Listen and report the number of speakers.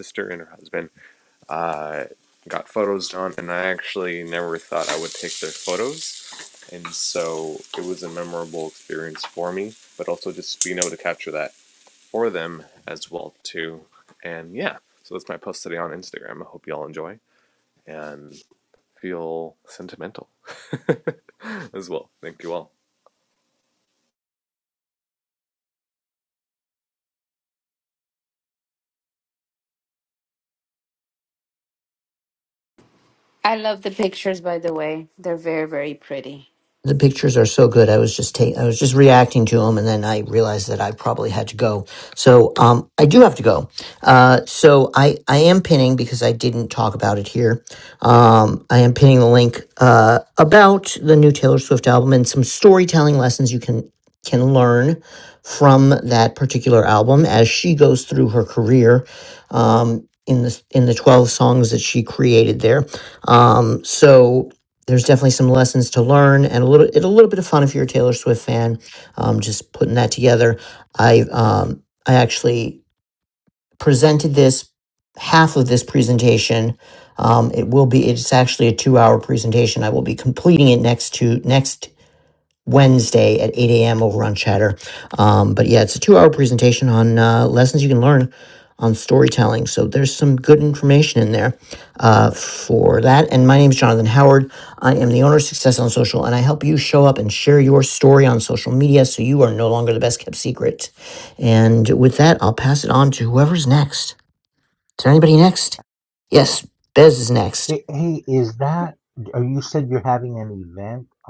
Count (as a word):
four